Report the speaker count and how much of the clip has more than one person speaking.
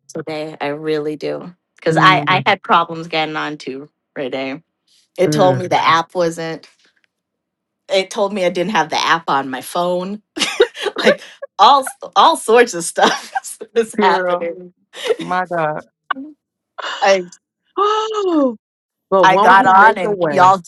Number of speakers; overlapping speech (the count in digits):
3, about 13%